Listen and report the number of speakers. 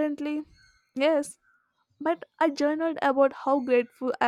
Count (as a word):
one